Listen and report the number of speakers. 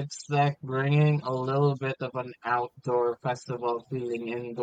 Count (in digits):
1